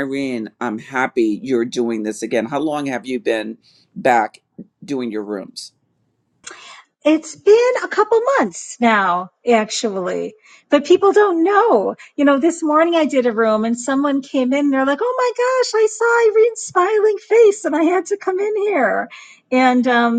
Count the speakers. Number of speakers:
2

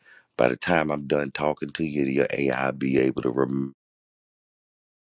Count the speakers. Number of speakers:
1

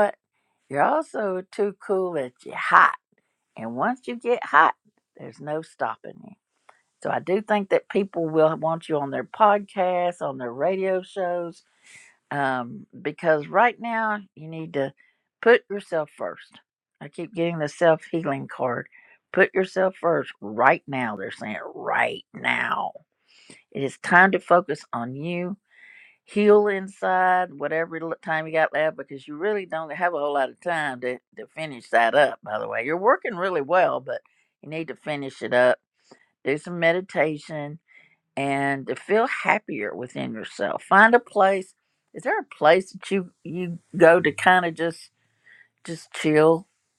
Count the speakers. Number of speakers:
1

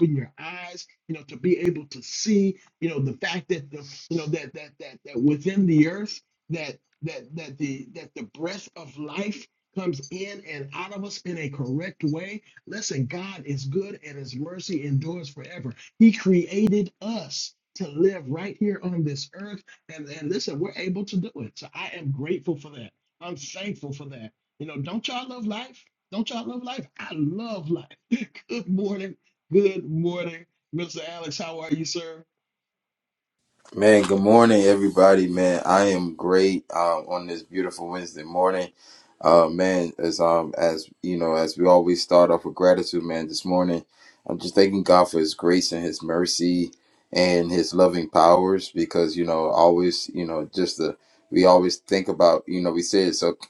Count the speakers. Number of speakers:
2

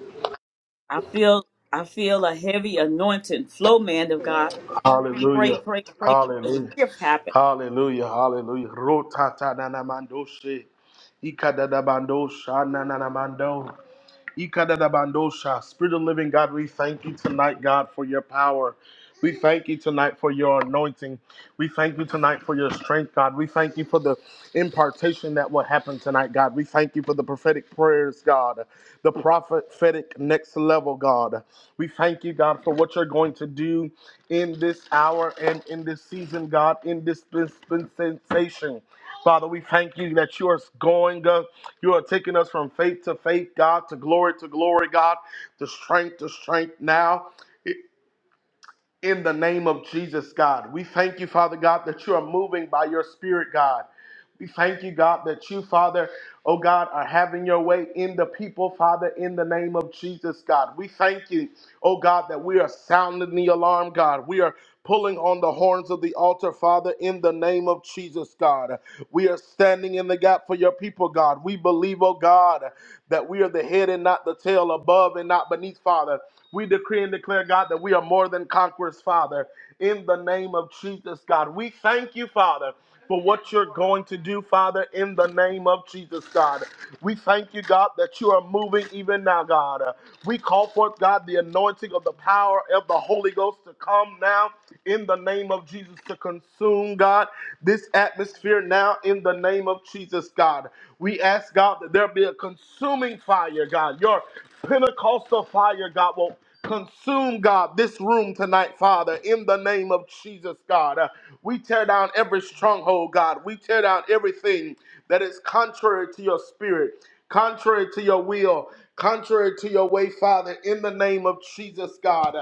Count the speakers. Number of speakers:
2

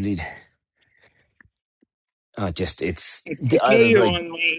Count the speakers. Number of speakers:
2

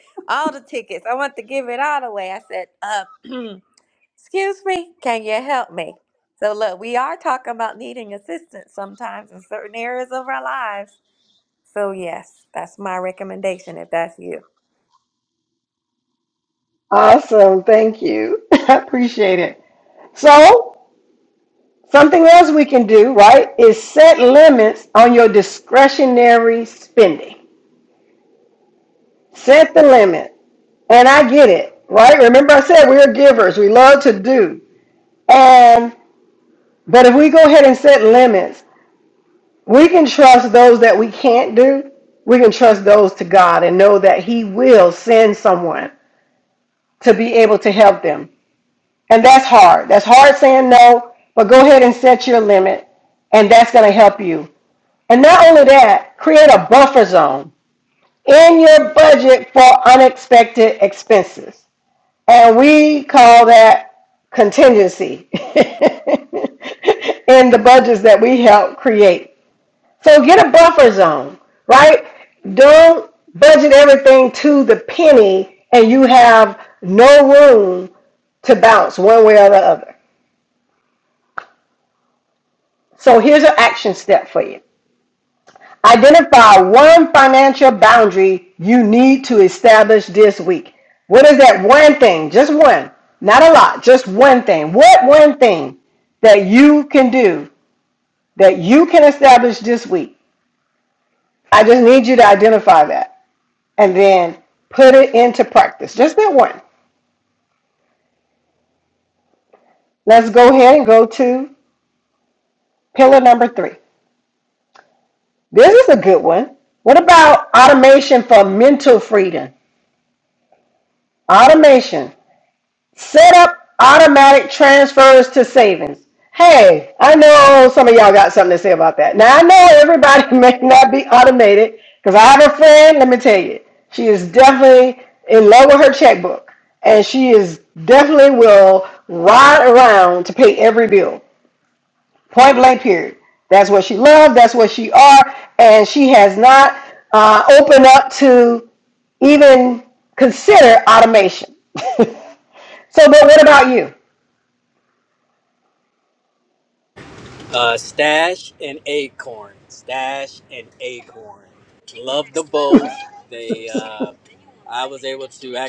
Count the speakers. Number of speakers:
3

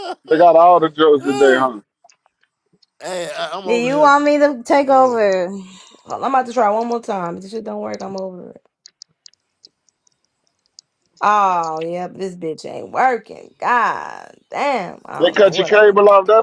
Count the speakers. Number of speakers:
4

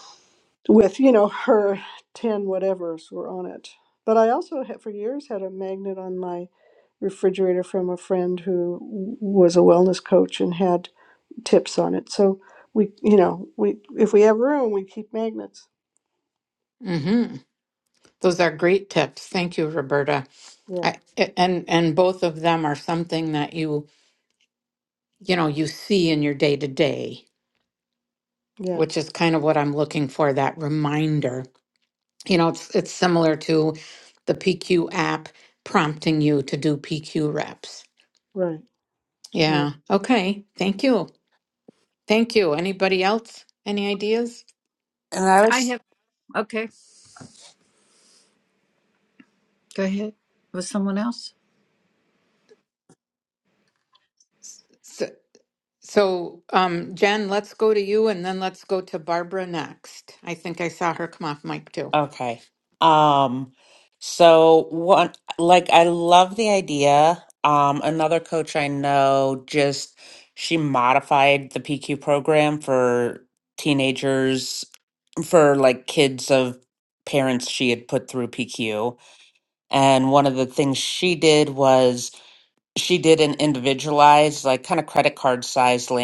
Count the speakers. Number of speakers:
4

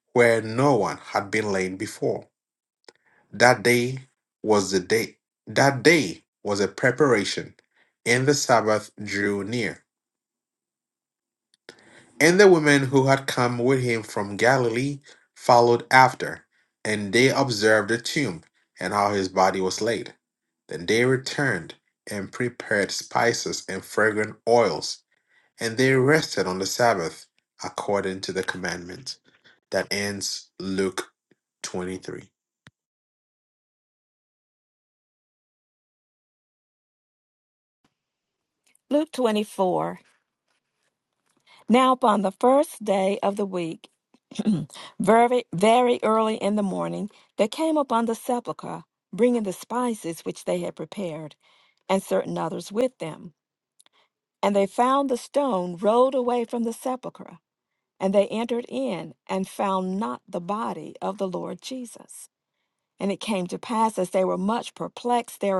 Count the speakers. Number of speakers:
2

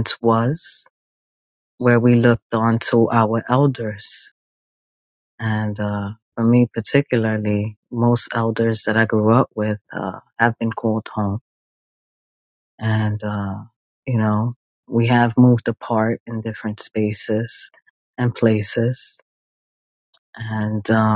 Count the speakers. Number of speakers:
1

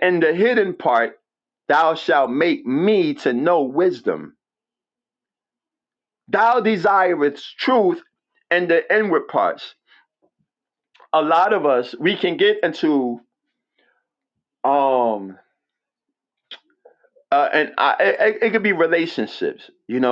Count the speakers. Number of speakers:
1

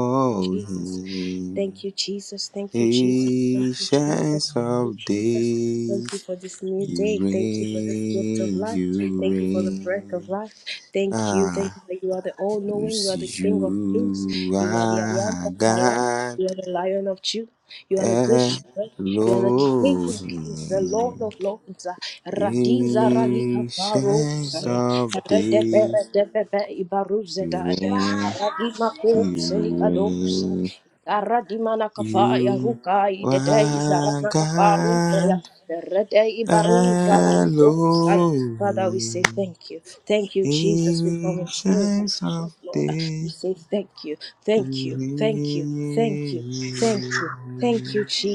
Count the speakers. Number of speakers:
2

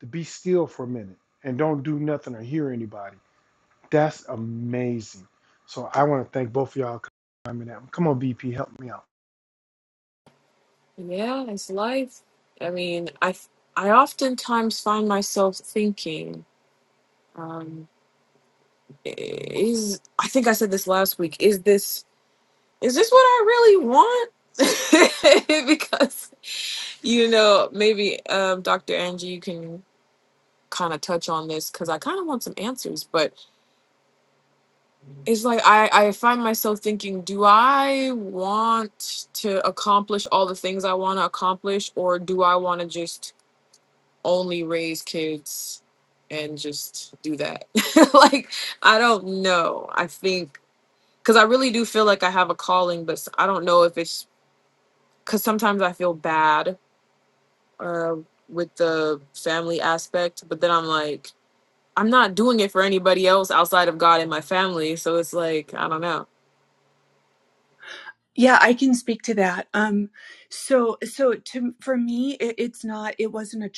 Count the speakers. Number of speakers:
3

